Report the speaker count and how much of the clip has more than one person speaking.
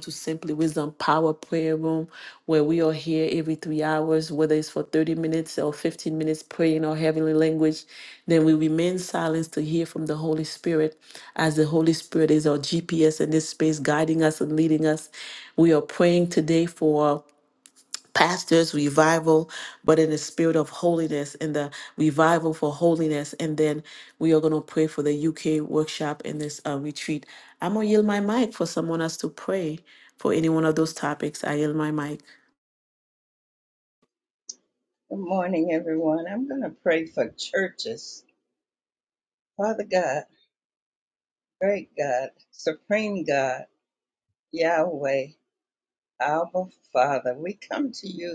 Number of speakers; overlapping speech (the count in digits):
2, no overlap